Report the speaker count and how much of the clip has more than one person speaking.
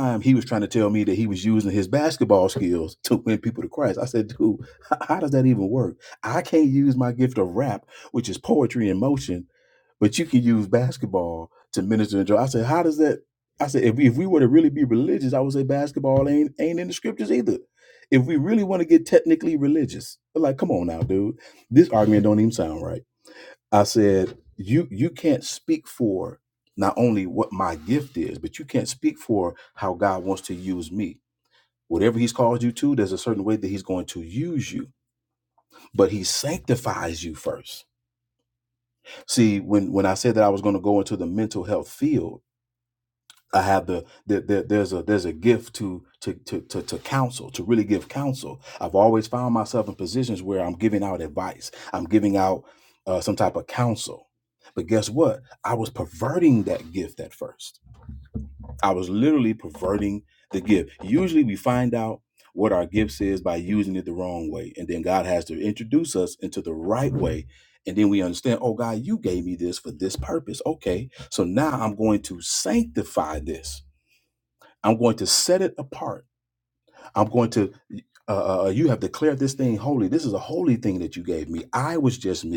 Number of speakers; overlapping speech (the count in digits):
1, no overlap